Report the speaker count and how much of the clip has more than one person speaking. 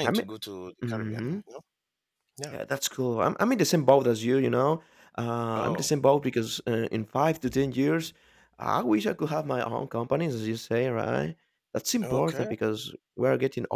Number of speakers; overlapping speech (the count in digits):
2, about 13%